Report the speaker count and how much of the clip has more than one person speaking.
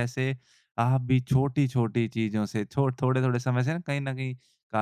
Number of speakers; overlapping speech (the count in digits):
1, no overlap